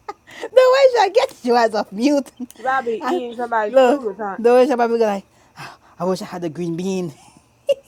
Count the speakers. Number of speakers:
2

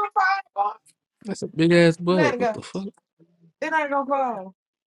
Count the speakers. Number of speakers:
2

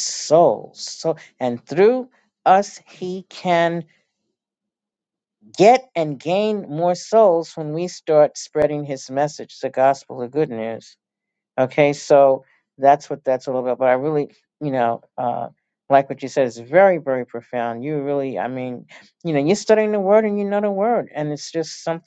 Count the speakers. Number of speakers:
1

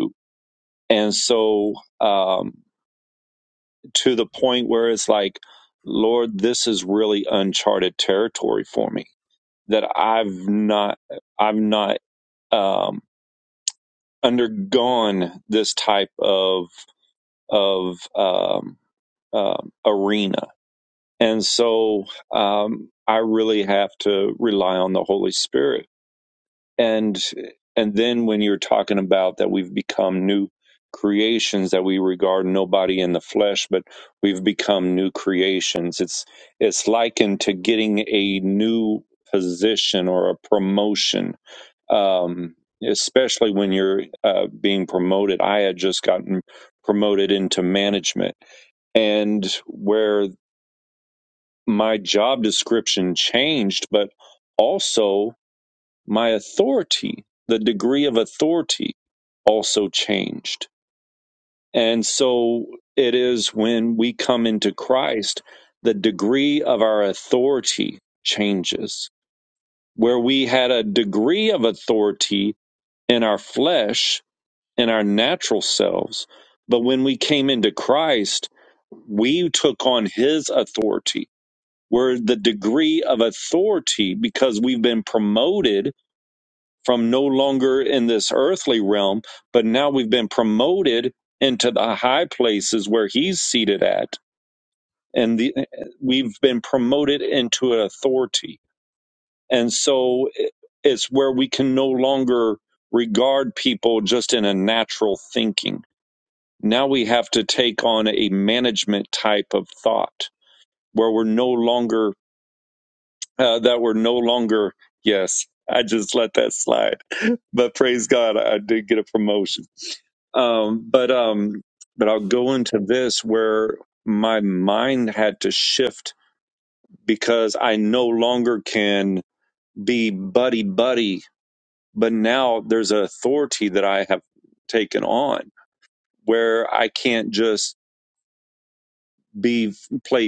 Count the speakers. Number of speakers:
1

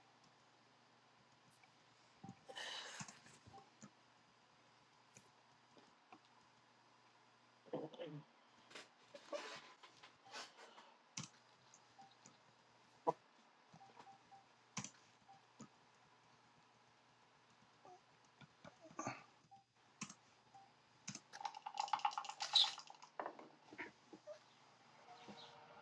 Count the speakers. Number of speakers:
0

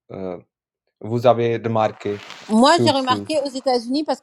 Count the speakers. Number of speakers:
2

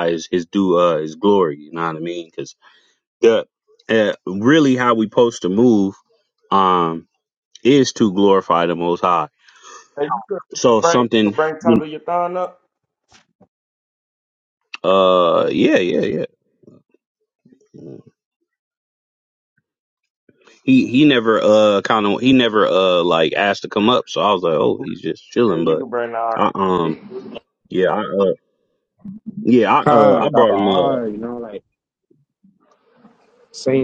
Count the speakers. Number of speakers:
3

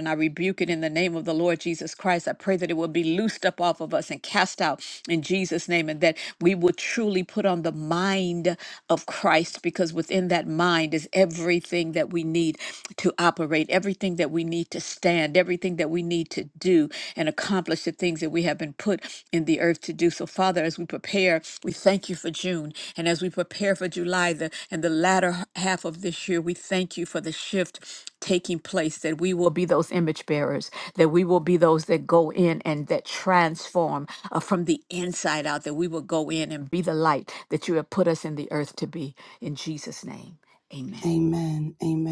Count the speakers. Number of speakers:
2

